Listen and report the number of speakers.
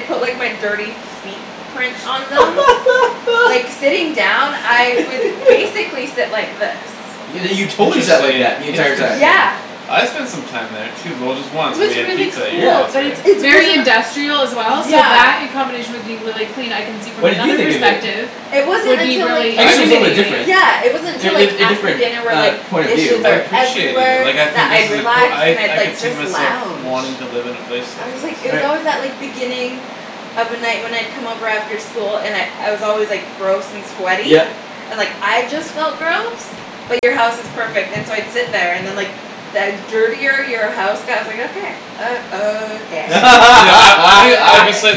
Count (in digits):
4